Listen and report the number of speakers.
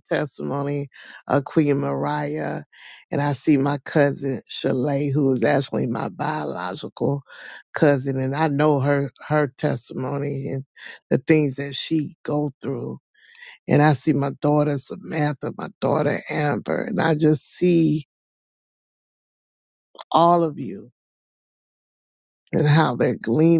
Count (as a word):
one